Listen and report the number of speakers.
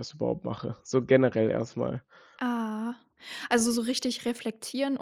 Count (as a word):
two